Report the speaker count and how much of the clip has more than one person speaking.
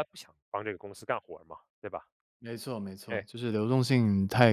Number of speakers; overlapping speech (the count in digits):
2, about 3%